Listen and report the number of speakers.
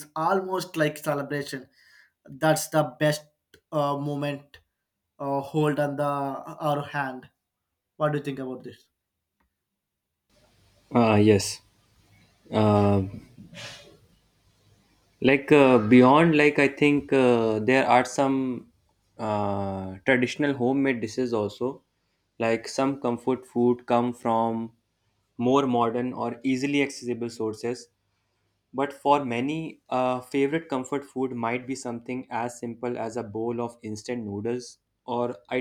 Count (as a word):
two